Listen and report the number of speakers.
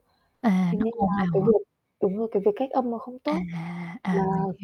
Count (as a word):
two